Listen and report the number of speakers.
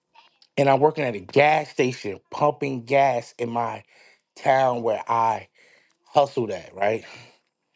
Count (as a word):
one